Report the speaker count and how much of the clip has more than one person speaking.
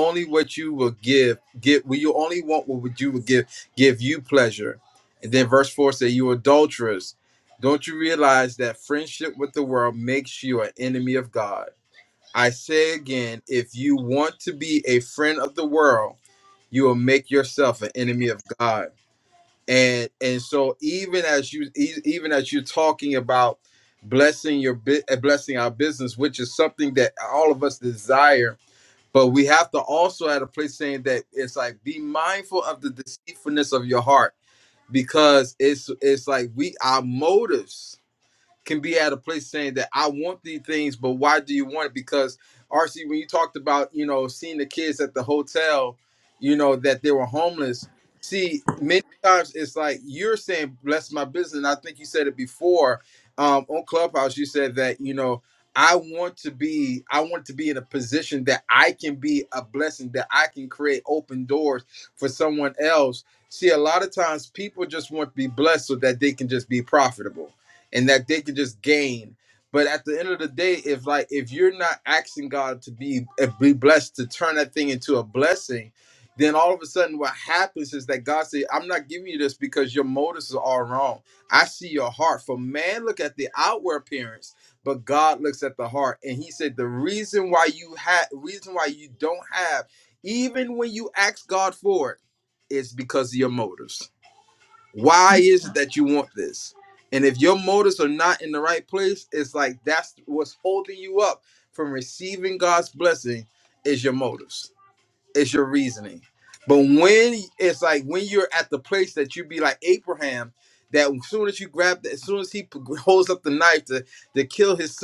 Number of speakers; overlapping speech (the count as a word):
one, no overlap